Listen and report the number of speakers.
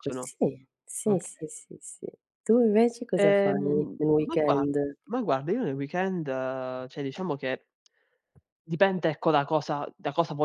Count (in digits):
2